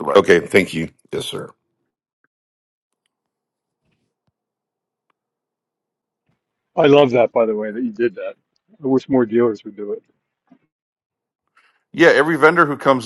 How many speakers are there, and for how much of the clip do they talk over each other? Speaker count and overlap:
three, about 1%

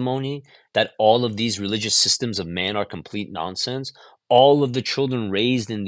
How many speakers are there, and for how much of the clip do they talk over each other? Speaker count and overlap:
one, no overlap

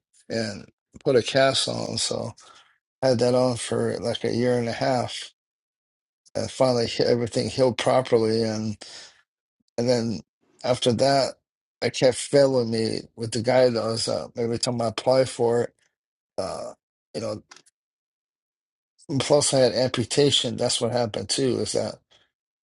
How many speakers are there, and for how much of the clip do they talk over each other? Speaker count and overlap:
one, no overlap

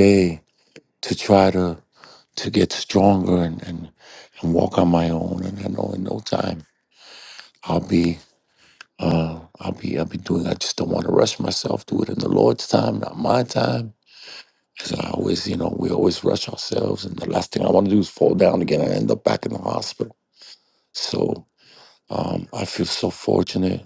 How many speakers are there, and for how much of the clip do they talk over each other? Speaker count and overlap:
one, no overlap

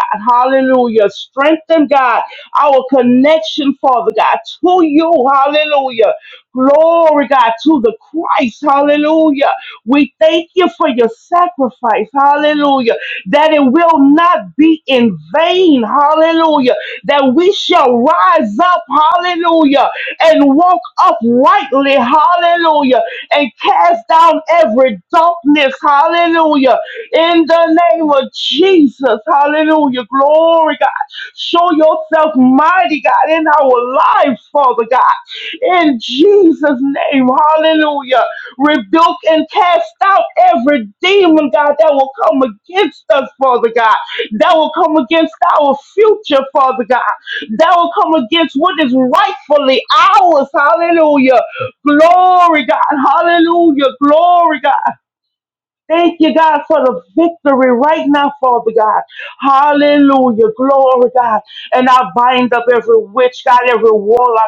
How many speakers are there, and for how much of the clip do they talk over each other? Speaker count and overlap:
one, no overlap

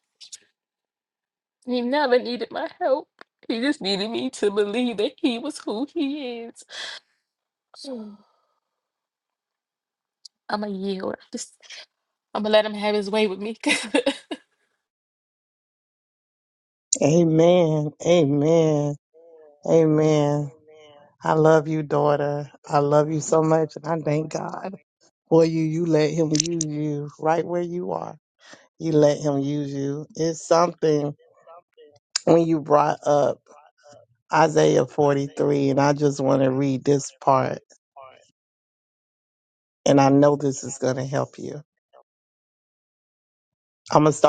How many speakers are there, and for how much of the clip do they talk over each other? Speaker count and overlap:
two, no overlap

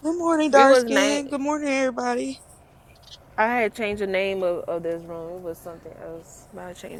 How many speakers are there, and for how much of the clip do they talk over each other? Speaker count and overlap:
two, about 11%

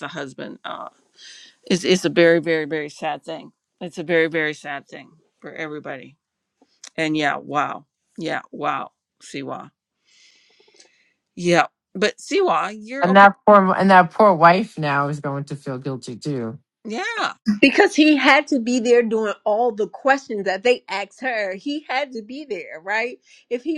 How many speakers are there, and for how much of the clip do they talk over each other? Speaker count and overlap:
three, about 1%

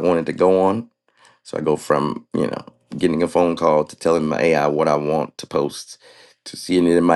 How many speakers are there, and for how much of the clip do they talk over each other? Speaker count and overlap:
one, no overlap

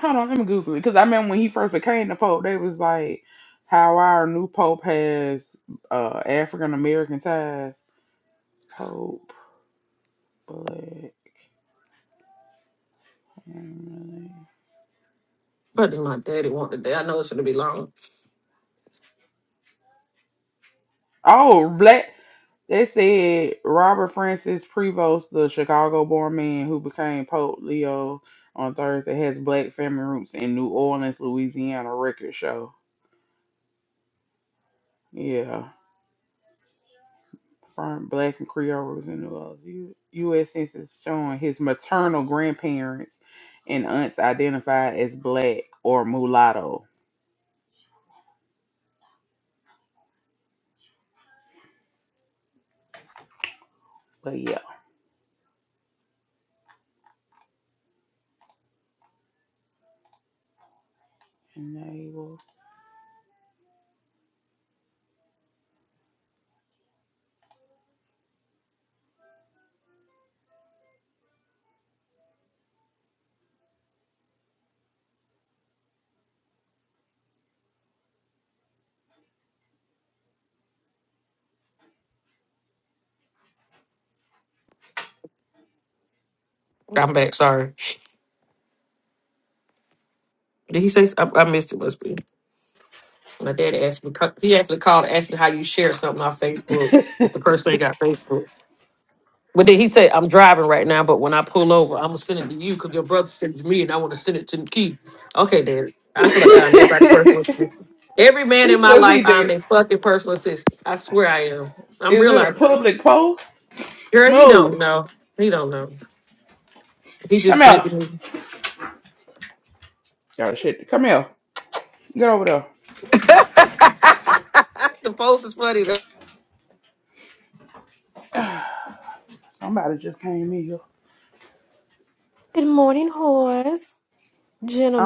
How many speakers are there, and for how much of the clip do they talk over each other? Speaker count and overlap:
three, about 2%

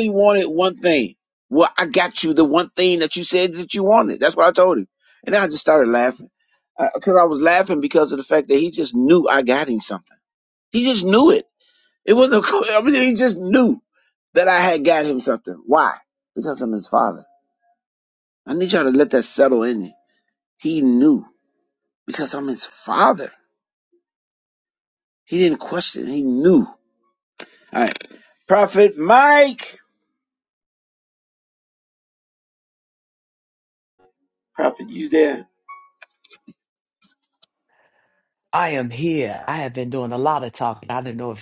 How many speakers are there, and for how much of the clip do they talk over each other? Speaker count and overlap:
two, no overlap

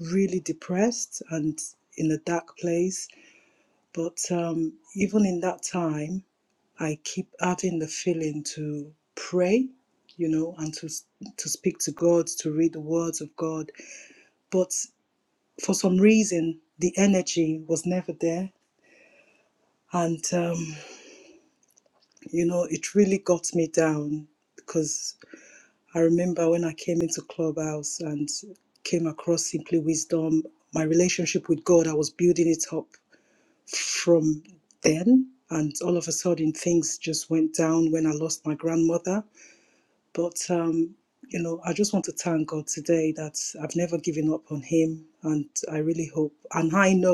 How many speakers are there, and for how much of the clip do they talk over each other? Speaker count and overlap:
one, no overlap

